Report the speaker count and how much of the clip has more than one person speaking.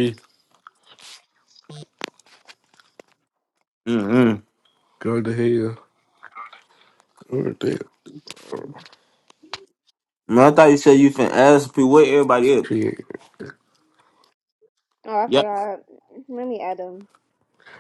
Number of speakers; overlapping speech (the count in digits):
3, about 1%